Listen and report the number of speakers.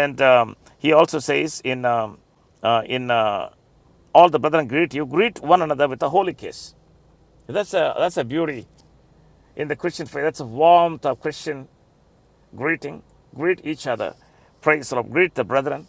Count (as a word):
one